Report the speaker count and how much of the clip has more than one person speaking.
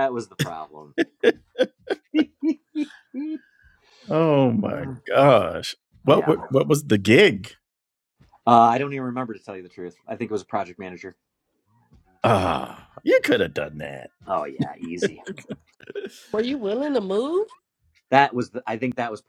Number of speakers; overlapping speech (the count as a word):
three, about 3%